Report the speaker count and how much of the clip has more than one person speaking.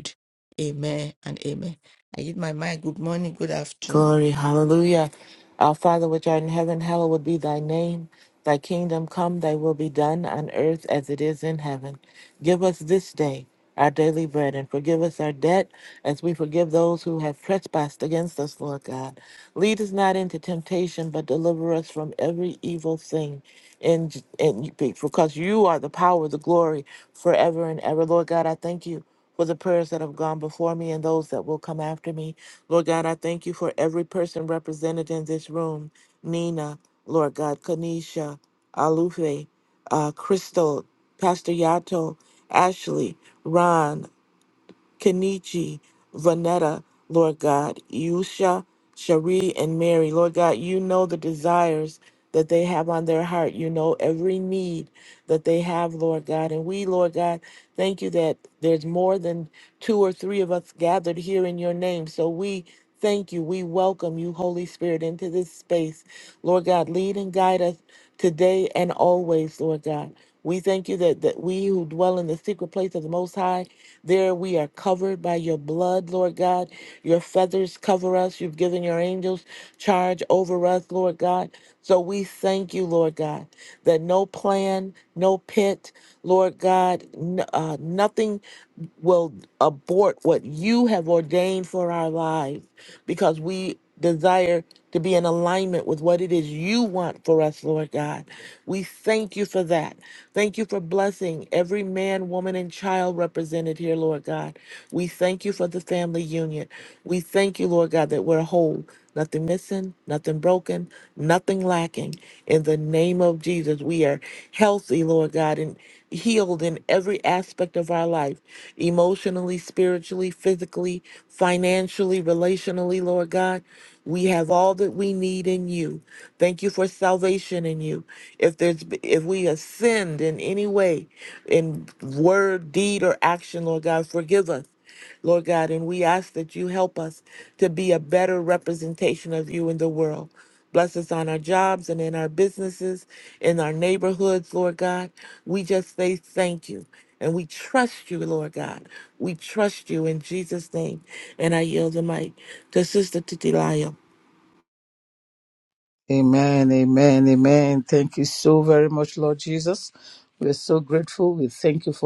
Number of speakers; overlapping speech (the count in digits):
3, under 1%